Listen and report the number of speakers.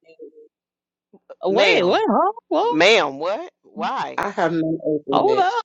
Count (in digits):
3